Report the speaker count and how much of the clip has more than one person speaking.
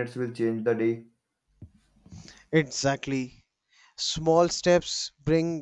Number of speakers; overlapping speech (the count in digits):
2, no overlap